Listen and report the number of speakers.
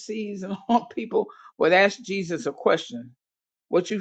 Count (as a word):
one